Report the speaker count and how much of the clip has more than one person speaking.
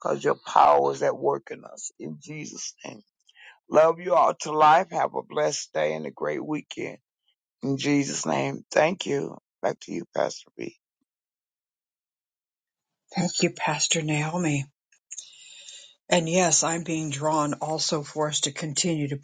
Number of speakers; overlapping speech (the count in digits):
2, no overlap